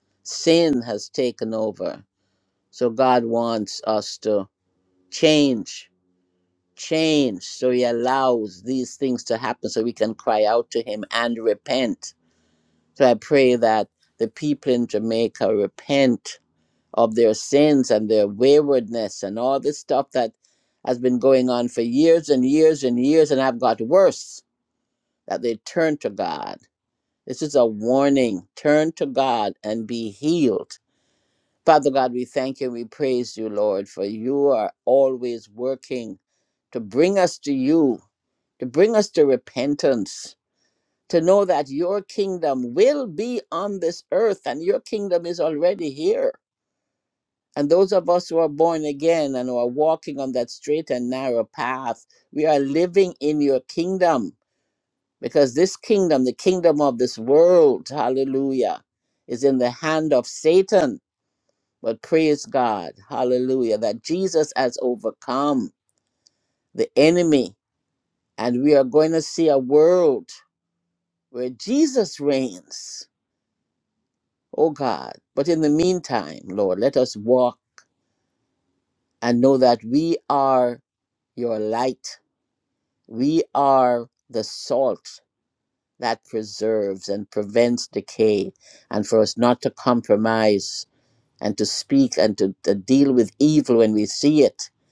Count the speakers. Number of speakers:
one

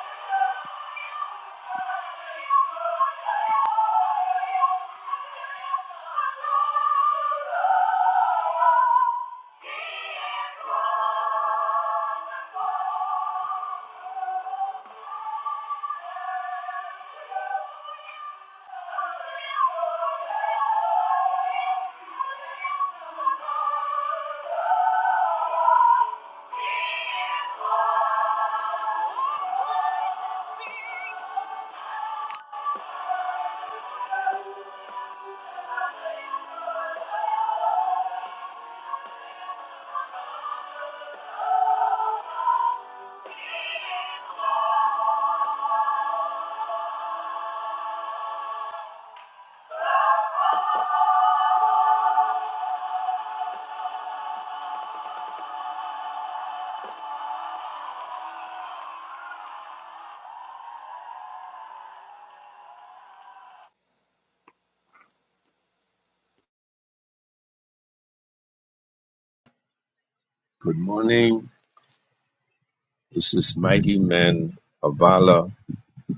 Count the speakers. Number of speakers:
two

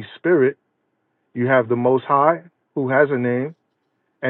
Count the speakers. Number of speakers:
one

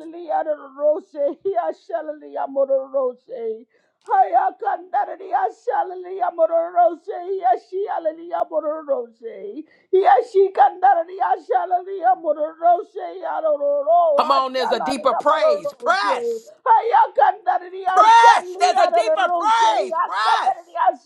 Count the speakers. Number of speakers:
two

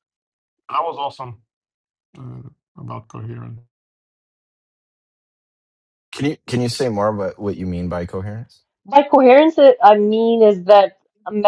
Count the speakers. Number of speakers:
three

